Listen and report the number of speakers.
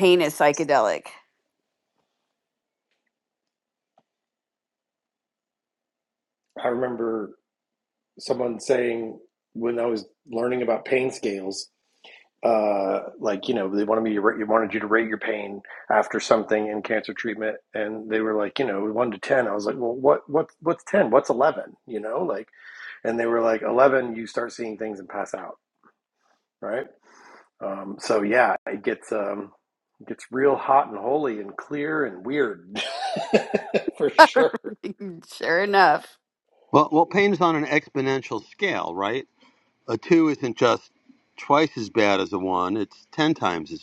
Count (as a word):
three